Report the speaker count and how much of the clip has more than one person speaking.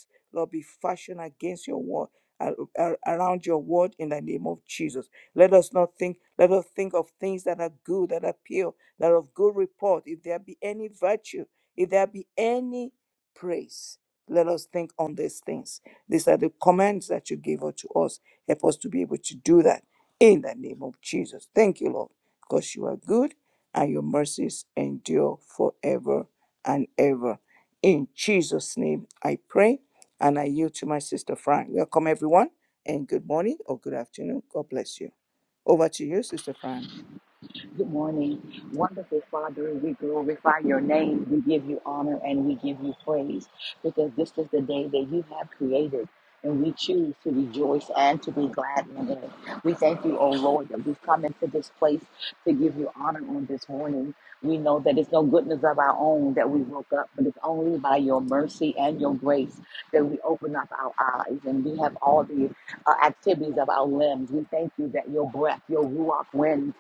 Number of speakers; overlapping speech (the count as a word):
two, no overlap